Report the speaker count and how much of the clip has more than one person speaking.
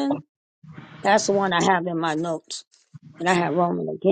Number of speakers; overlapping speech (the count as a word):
one, no overlap